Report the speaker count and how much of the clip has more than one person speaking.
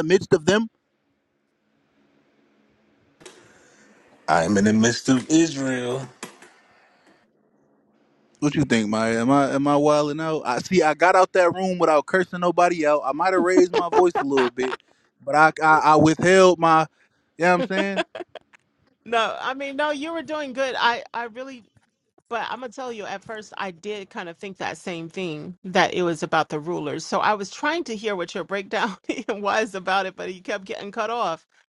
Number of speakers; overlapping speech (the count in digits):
3, no overlap